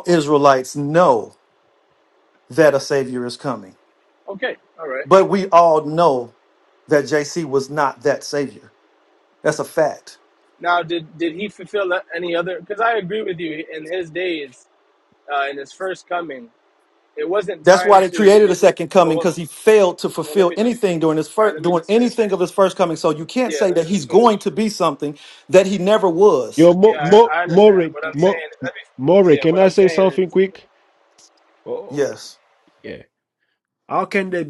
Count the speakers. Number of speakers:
3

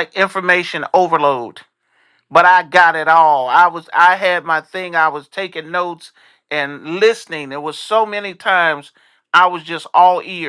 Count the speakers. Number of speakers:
1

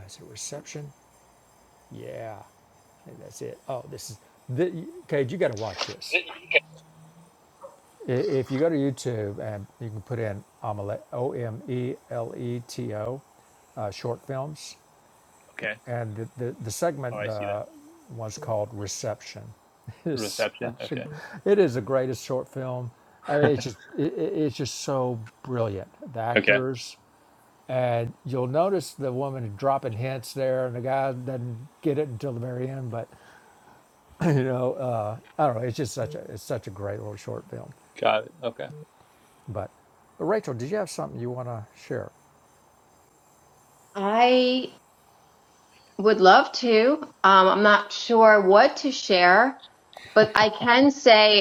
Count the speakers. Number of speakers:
3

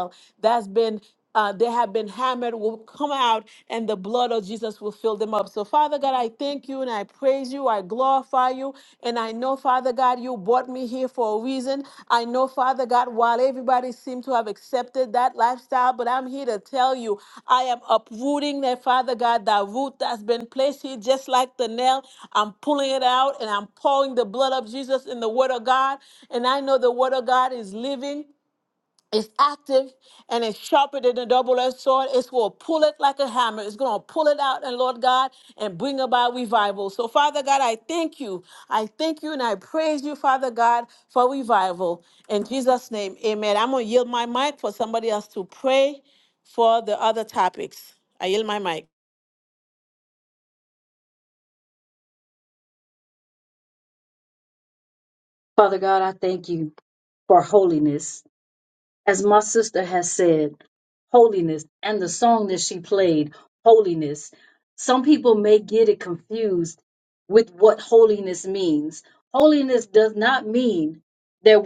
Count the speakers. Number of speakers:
2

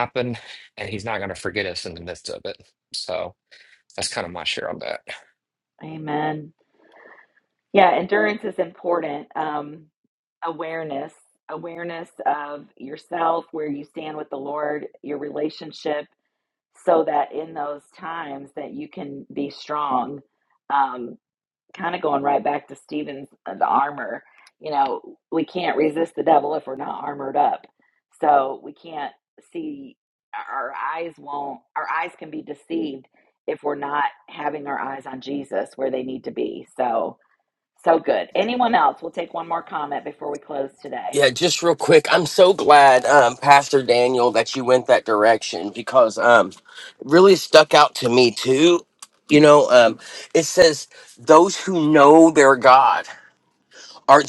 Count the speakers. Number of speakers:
3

